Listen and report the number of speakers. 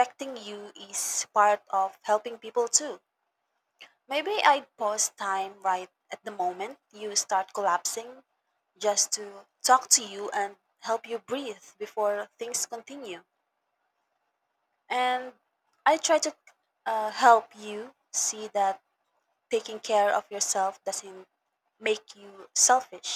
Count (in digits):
1